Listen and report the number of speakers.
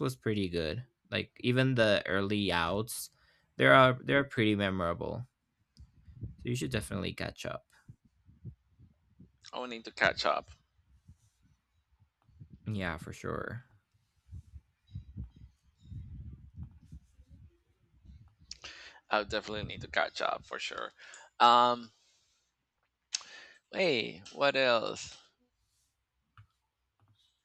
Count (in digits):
2